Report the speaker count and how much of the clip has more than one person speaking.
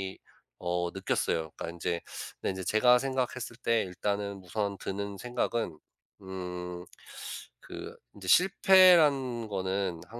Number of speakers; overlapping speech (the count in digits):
1, no overlap